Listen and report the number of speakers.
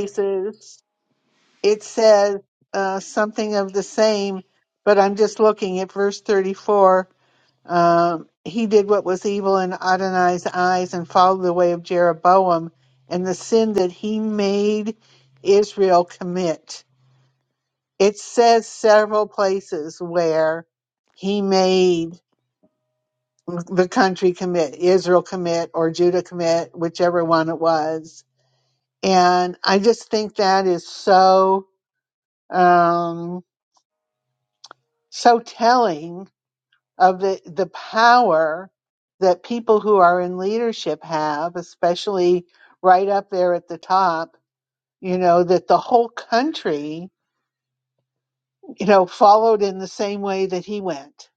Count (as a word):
one